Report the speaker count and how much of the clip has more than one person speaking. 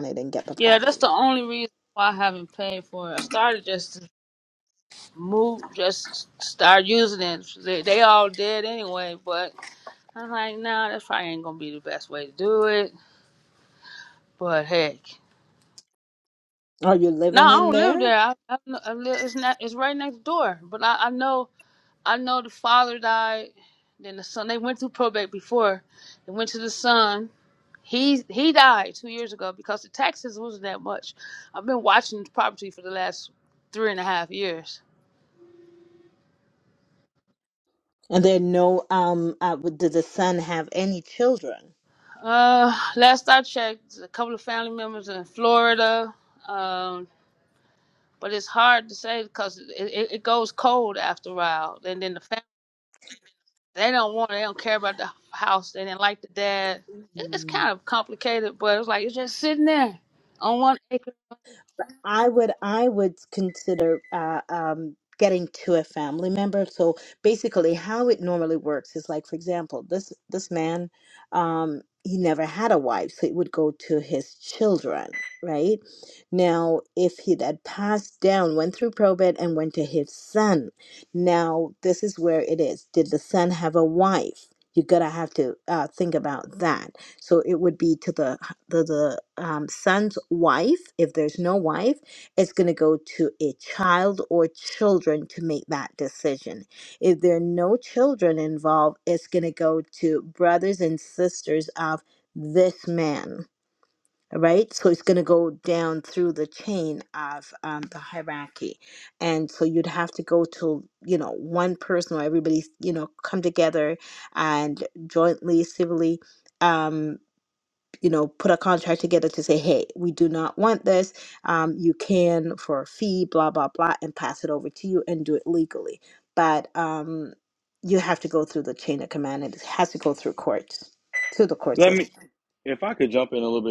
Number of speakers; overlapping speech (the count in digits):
3, about 1%